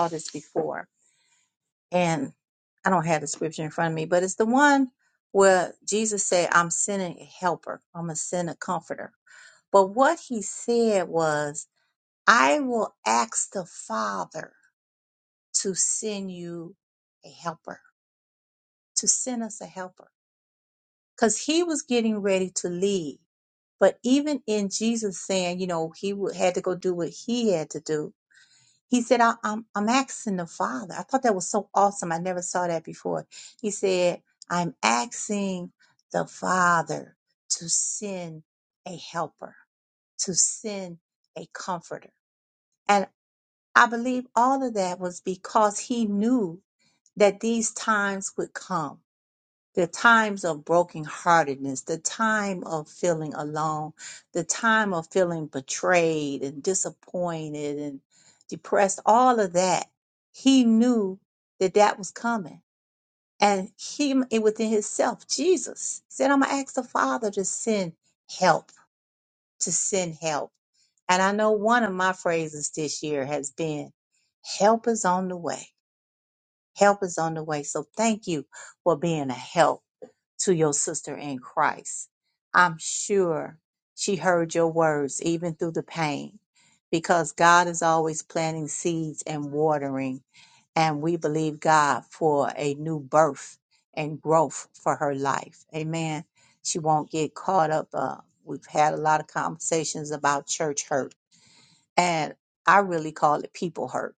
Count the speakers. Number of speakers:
1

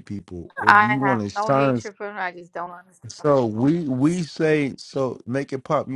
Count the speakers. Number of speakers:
2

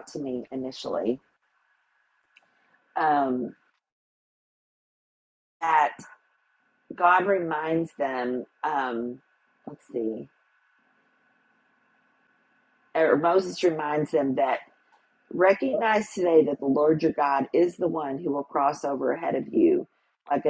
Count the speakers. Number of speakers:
1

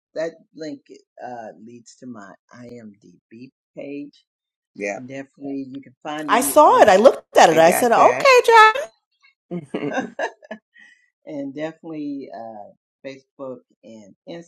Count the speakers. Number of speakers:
3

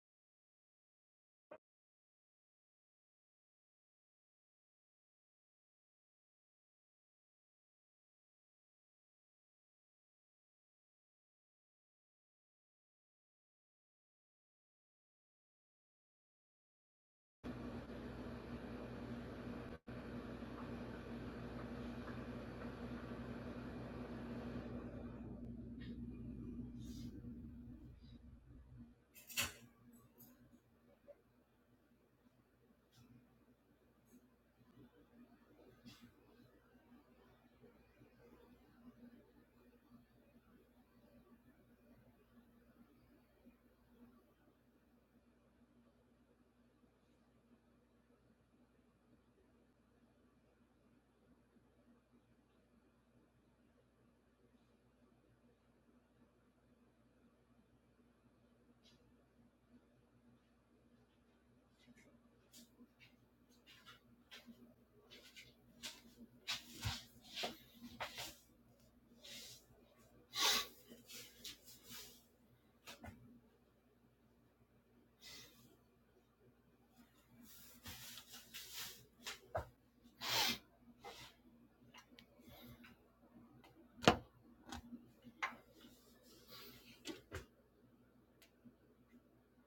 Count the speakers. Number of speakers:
0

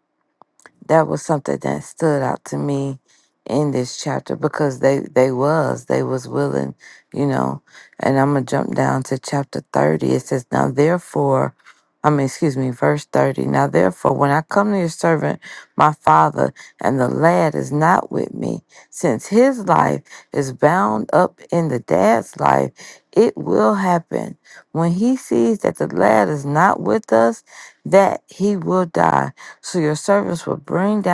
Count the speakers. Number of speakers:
1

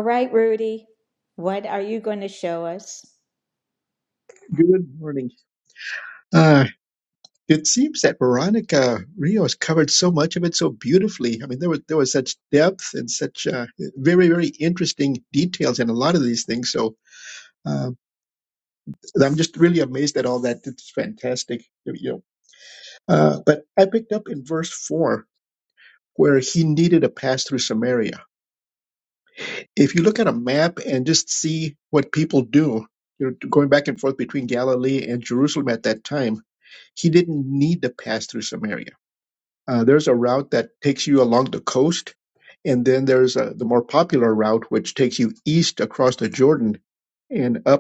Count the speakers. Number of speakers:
2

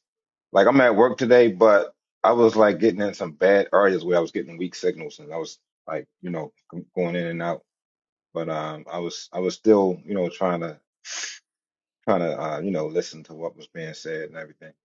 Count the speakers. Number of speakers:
1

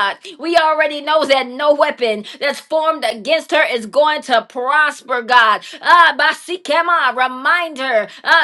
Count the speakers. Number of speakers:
1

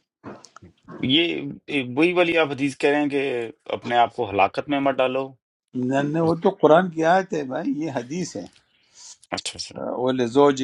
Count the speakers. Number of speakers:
2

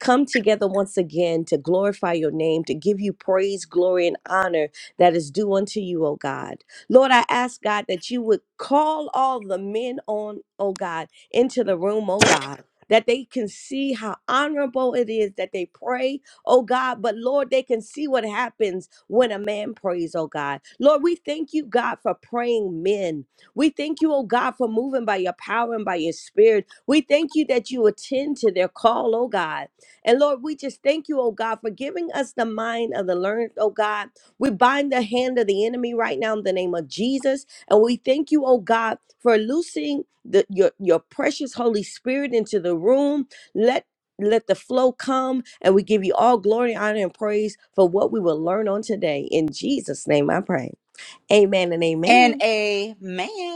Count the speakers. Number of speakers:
2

